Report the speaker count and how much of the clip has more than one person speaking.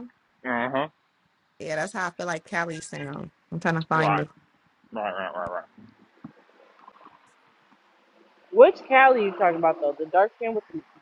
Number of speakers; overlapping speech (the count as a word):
three, about 3%